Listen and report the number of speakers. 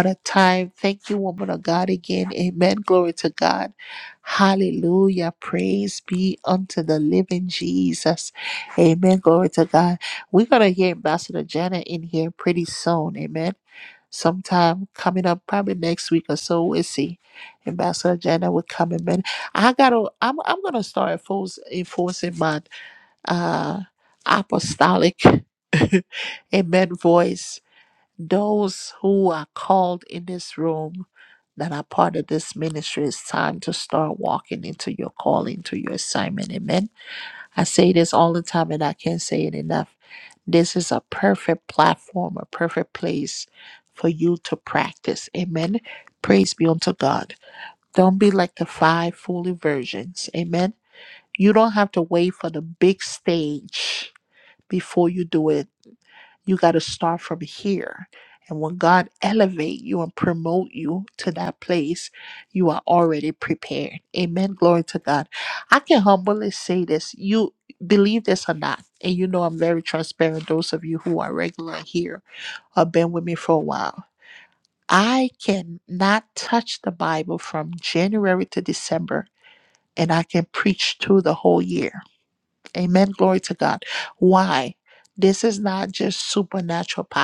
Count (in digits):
1